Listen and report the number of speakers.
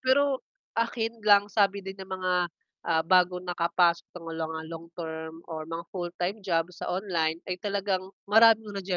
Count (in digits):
1